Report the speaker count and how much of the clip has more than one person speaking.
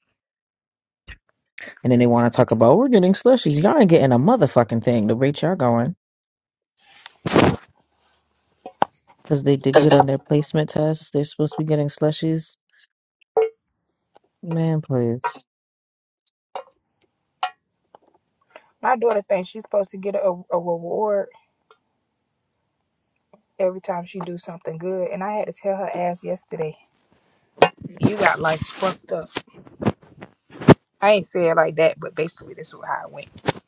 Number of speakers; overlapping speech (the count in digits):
2, no overlap